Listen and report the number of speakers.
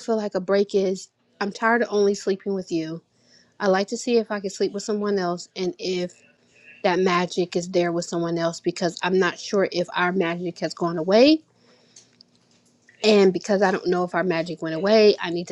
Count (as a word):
one